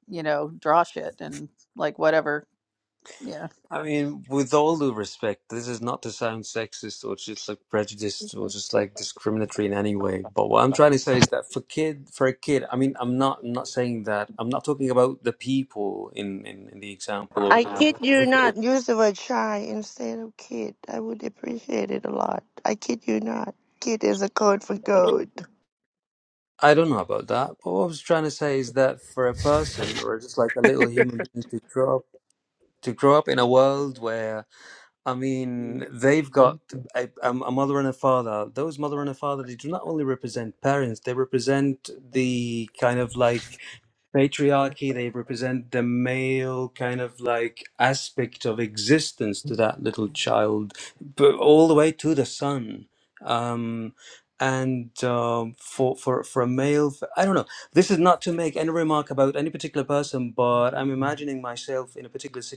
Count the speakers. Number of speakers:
3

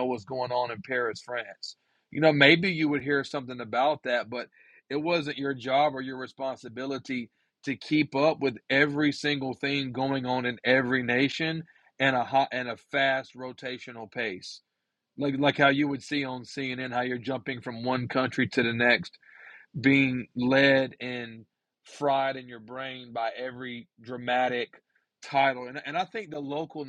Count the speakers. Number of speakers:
1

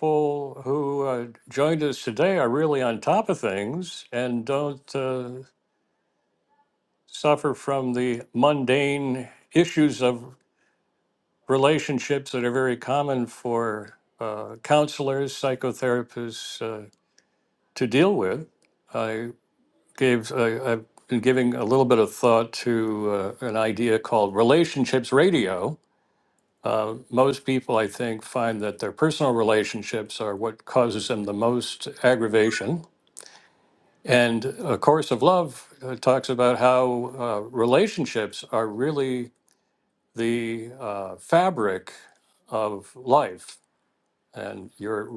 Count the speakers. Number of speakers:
1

